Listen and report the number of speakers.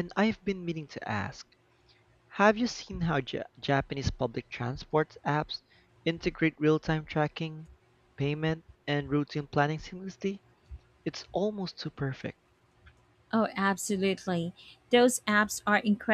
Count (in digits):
2